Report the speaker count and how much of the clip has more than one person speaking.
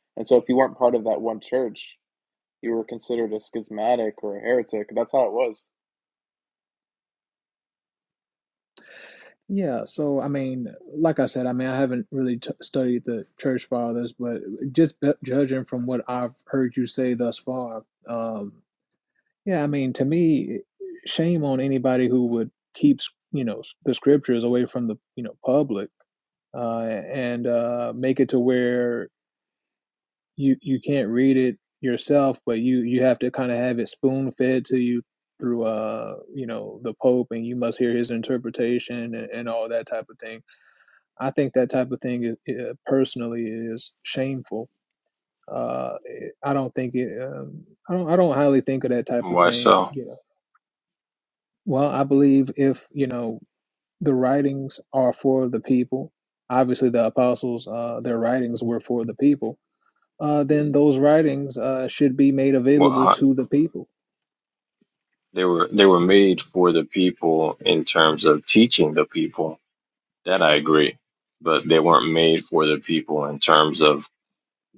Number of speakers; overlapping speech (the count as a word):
three, about 1%